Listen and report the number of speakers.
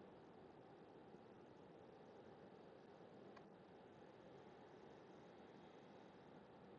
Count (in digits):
0